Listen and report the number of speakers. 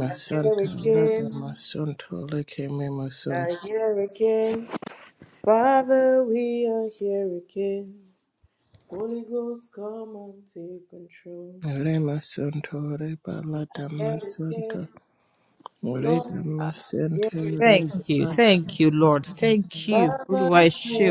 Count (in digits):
3